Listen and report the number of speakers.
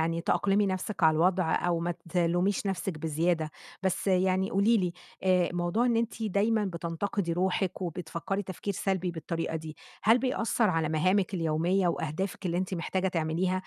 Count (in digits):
1